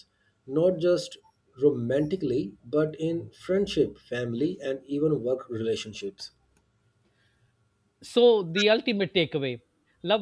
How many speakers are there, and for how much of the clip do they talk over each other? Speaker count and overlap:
2, no overlap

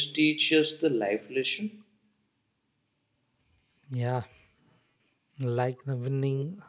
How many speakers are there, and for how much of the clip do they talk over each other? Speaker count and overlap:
2, no overlap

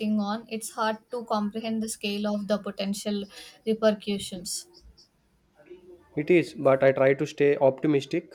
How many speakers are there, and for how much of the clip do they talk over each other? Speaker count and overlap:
2, no overlap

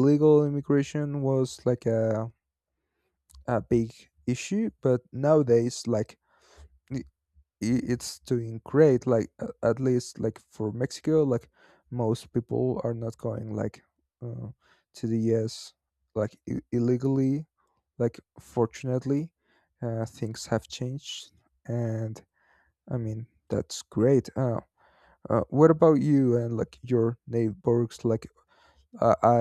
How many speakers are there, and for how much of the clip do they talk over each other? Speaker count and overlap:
1, no overlap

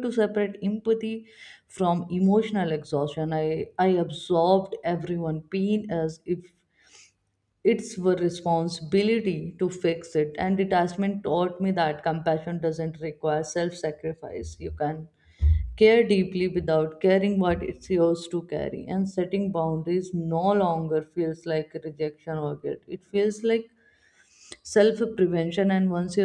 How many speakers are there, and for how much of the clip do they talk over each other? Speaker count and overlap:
1, no overlap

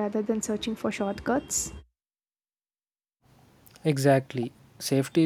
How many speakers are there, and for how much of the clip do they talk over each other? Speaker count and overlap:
2, no overlap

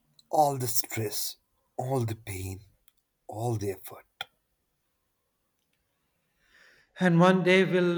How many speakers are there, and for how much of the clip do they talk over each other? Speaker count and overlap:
2, no overlap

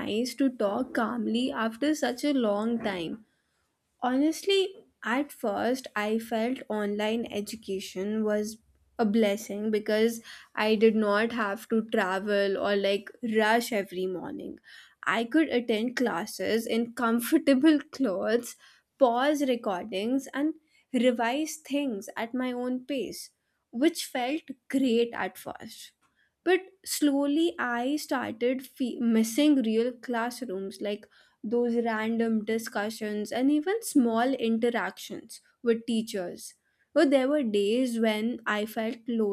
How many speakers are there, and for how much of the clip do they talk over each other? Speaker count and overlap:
1, no overlap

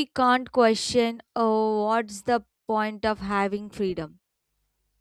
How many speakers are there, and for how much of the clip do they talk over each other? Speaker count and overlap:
1, no overlap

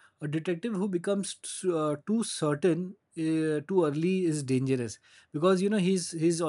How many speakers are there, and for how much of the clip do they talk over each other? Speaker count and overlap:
1, no overlap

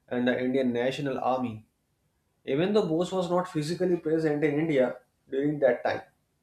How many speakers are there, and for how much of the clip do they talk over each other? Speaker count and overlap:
1, no overlap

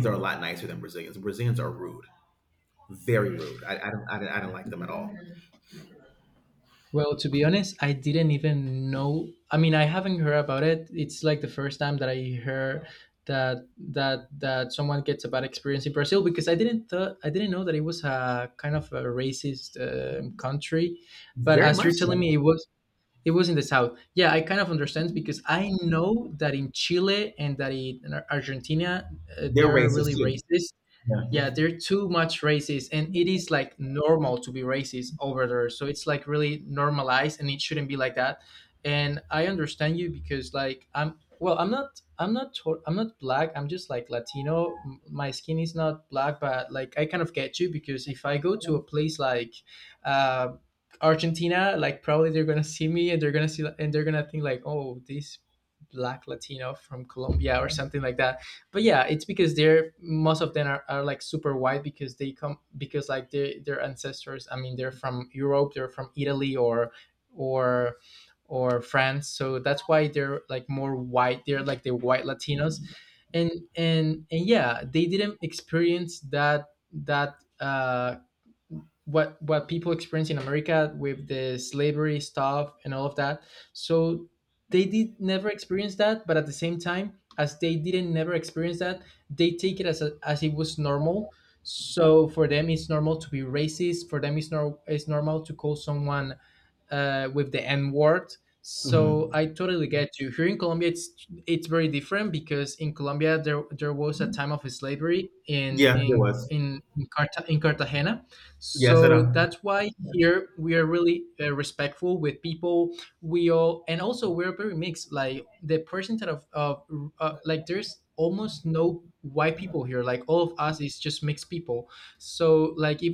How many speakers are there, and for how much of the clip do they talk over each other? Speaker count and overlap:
2, about 3%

